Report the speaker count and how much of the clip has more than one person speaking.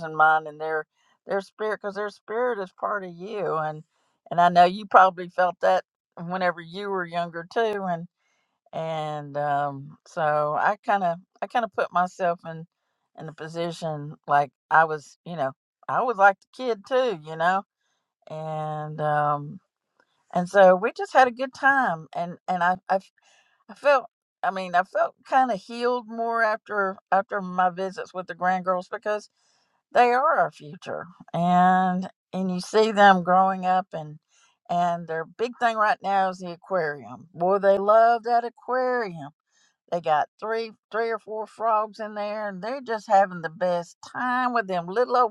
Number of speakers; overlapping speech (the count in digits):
1, no overlap